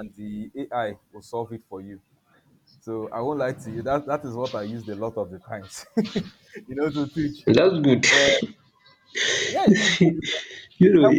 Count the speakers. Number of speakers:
two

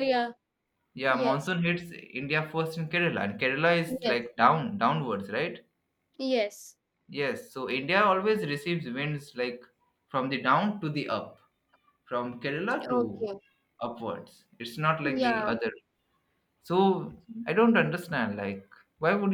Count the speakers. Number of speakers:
two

